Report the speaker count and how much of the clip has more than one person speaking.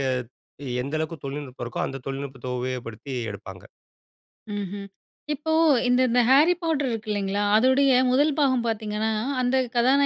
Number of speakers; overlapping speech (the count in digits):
2, no overlap